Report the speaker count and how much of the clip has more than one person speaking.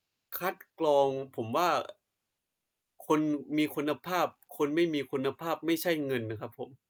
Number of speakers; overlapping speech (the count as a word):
one, no overlap